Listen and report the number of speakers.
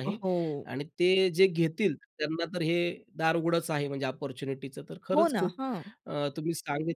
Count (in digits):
2